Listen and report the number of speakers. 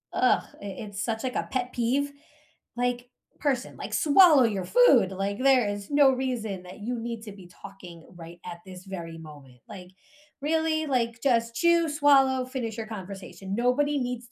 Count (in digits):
1